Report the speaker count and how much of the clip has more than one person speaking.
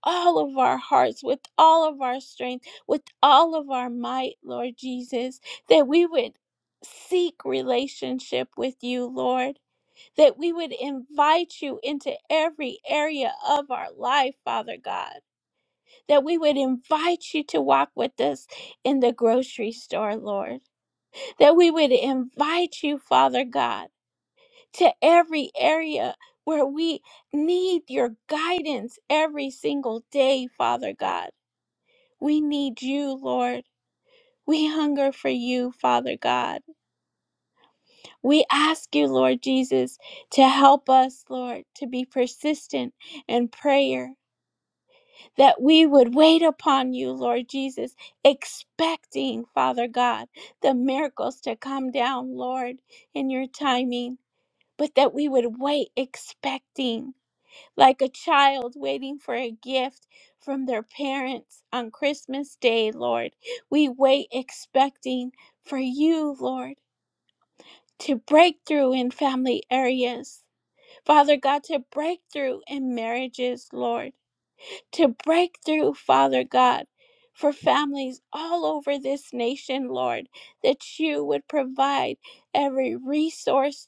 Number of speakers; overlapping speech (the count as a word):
one, no overlap